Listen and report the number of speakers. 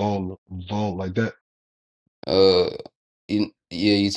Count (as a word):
two